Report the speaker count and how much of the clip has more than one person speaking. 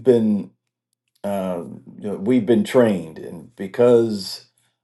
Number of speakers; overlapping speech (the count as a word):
one, no overlap